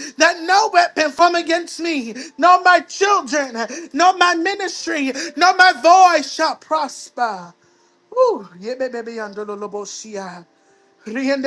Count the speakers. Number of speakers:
1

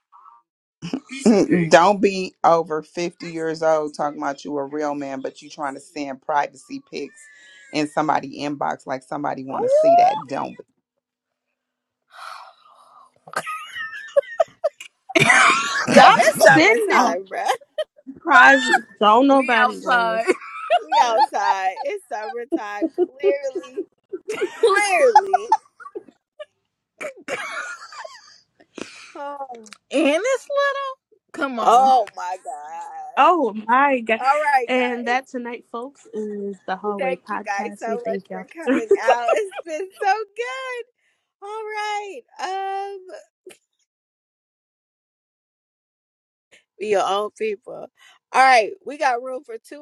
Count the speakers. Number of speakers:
4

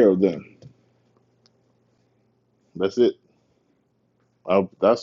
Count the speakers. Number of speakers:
1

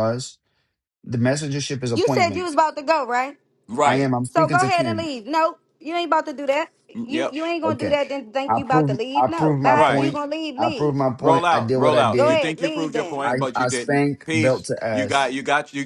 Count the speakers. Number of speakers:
3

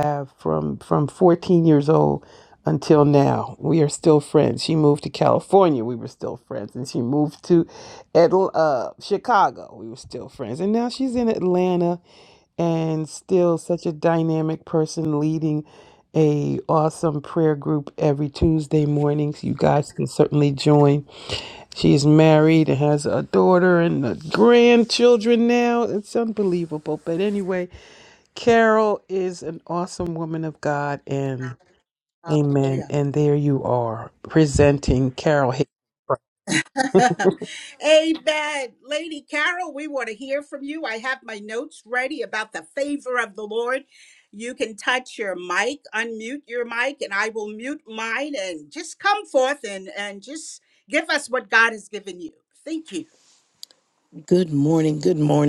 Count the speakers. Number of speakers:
3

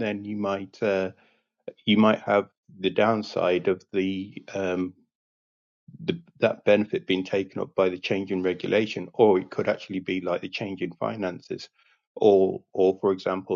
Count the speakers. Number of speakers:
1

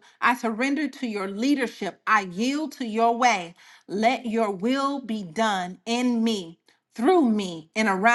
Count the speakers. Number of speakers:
1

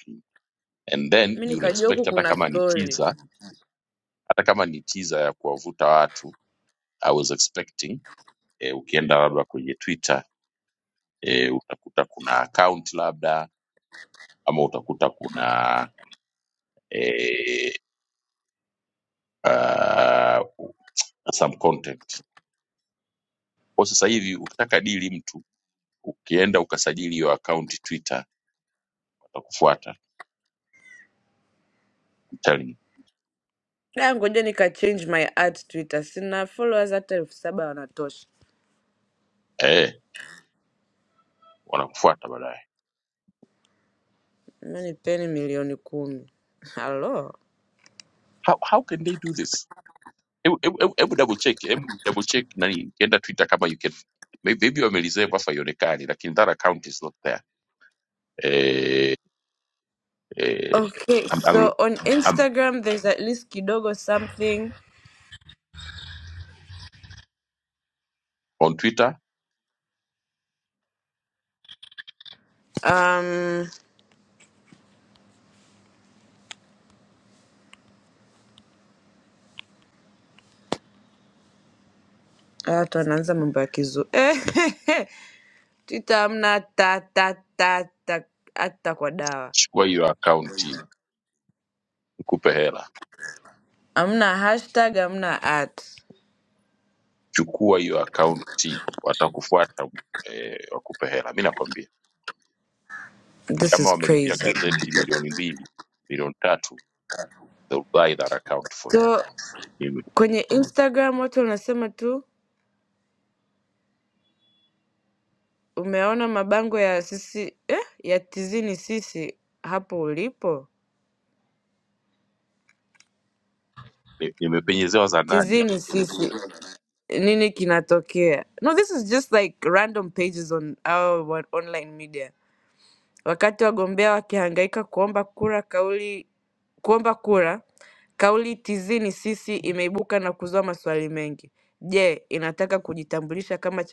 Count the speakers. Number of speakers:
2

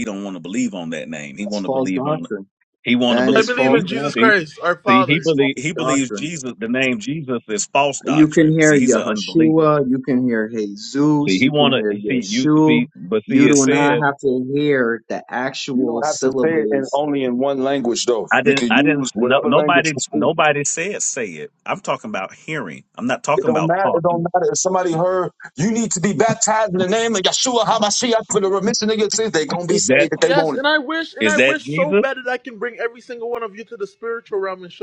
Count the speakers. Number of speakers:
4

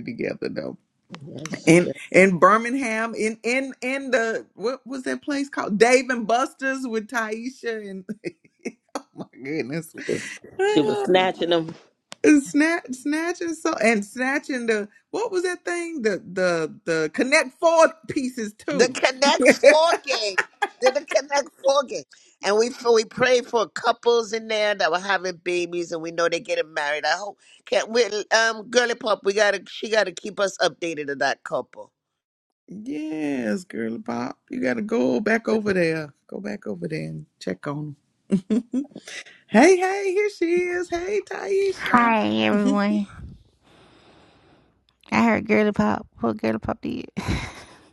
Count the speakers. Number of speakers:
4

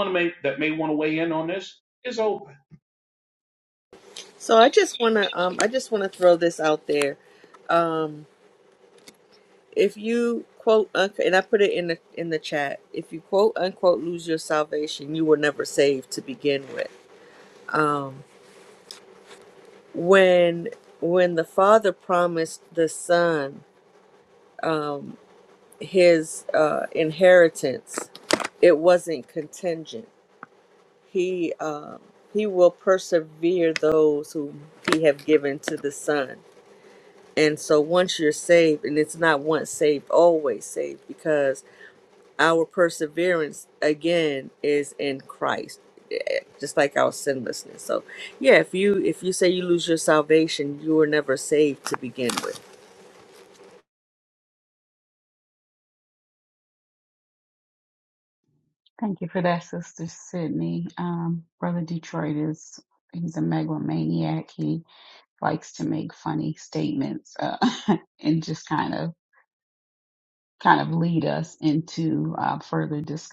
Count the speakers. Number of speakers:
3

